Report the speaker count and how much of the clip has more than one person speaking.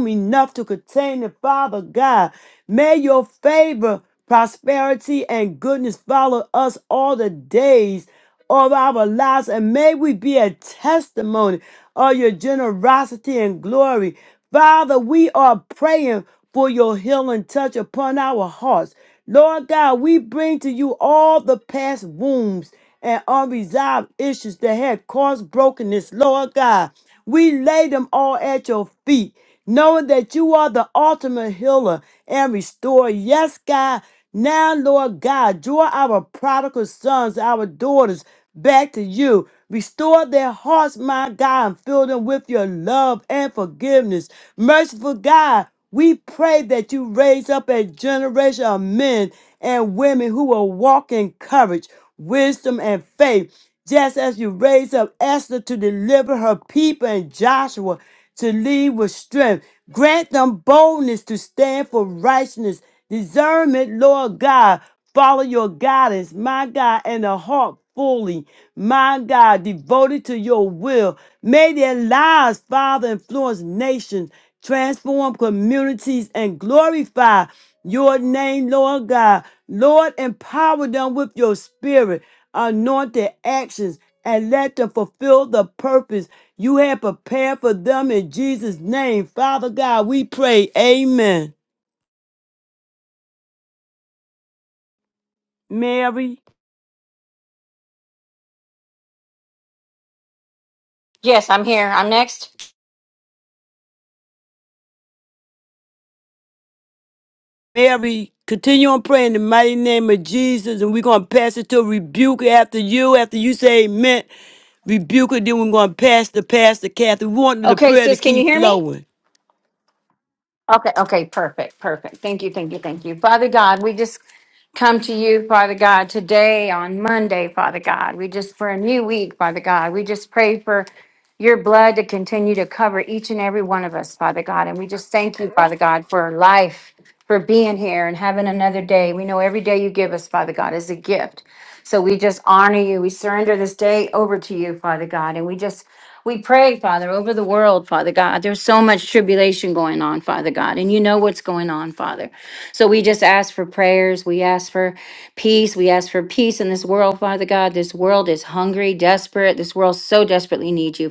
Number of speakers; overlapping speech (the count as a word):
two, about 1%